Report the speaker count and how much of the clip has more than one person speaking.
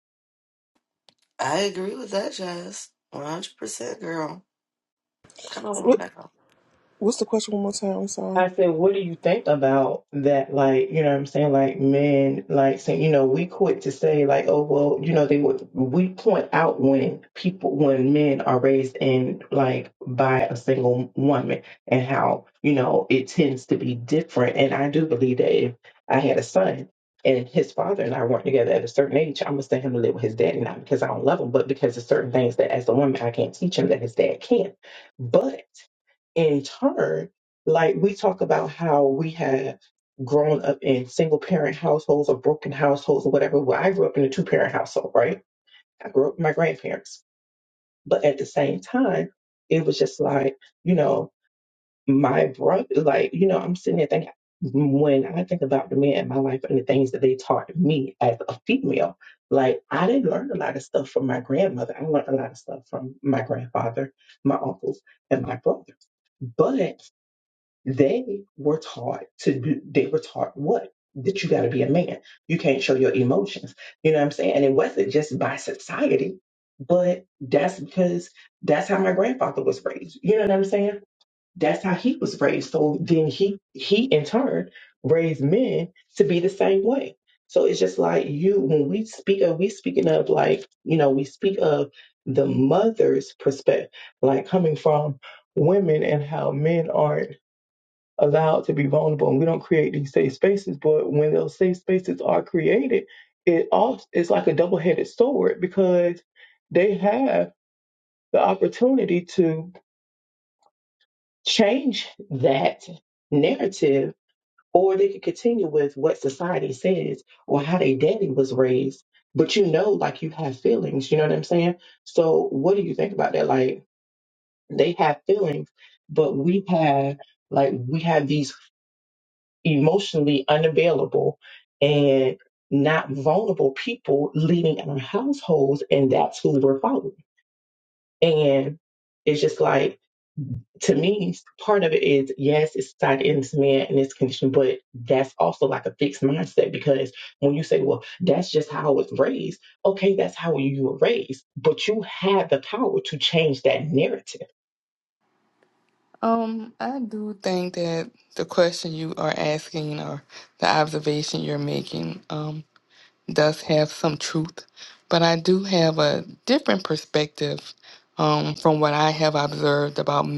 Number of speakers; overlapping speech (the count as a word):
four, under 1%